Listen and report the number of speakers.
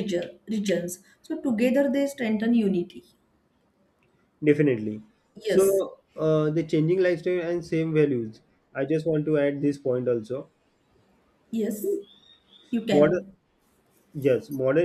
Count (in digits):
2